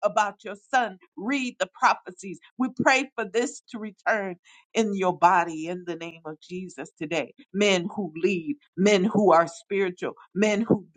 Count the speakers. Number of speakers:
1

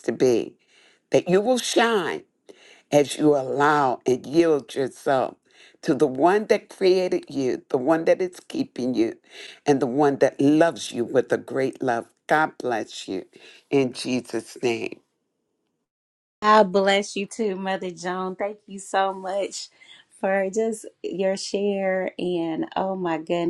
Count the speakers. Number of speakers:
2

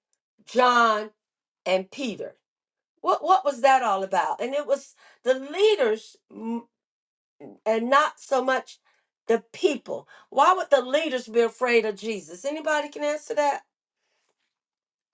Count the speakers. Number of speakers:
1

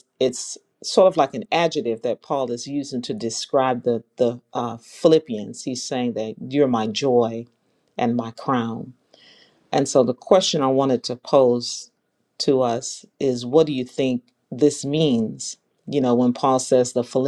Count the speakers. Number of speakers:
1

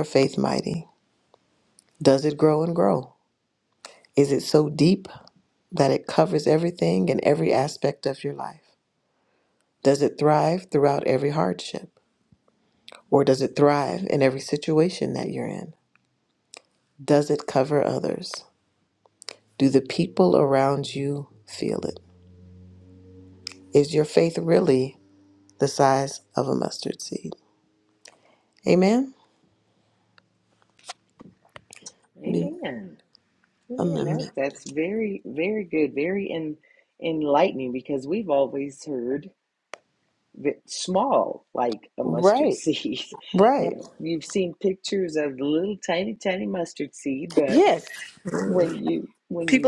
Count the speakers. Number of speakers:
2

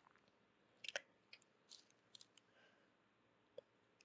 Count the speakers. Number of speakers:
0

